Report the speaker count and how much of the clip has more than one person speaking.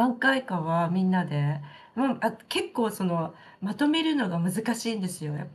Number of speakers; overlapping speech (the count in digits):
1, no overlap